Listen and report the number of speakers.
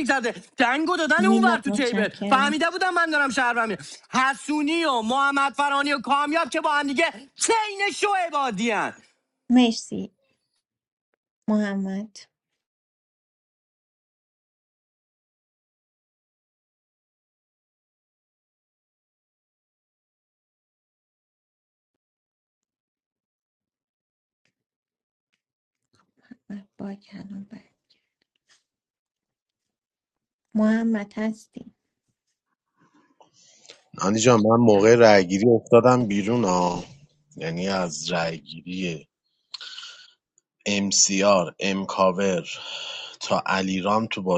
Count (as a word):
three